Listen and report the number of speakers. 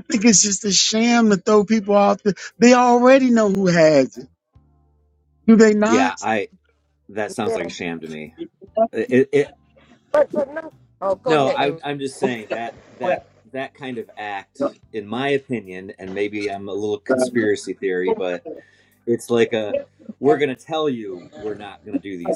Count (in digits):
3